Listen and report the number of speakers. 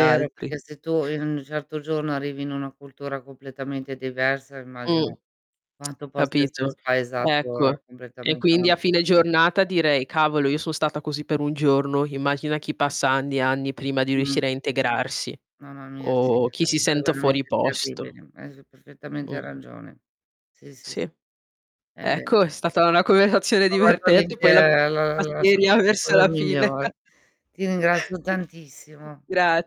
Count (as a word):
two